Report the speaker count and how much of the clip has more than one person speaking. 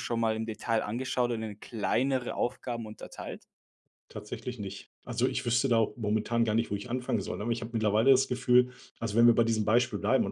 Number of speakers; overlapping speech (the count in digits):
2, no overlap